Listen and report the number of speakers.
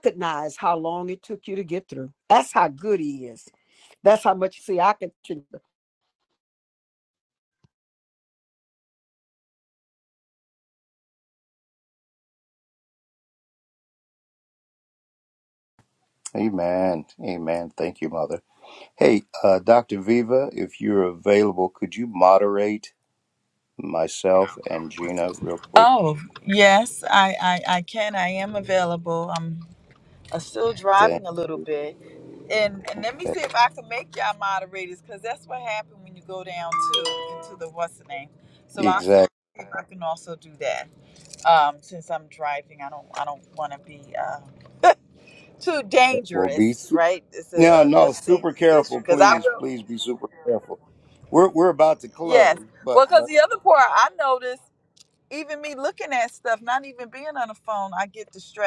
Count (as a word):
three